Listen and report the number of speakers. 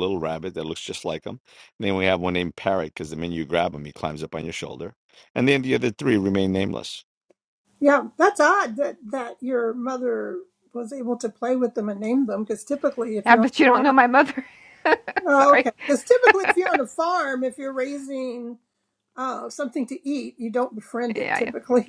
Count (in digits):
3